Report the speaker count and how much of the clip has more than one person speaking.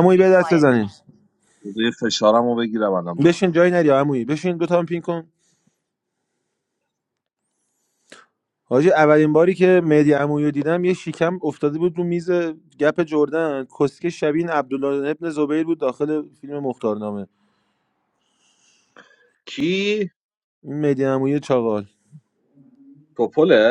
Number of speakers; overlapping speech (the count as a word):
two, no overlap